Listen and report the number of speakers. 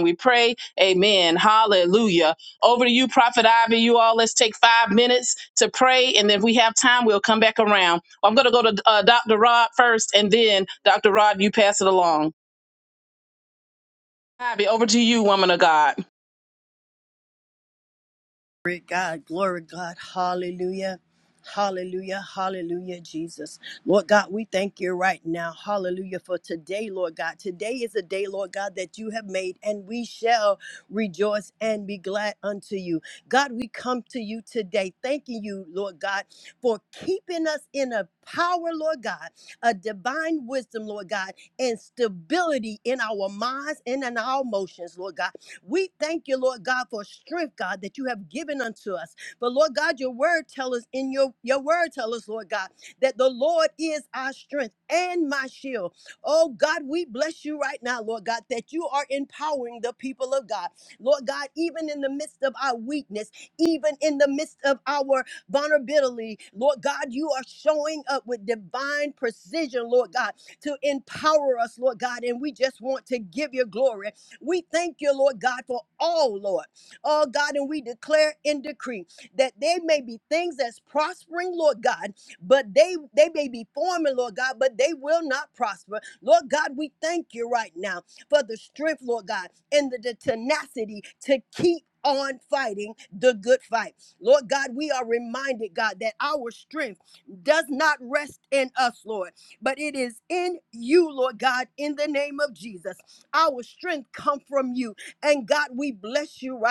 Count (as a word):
two